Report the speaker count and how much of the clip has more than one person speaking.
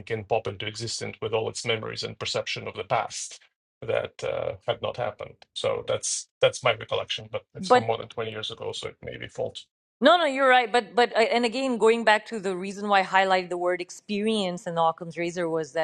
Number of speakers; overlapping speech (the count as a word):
two, about 2%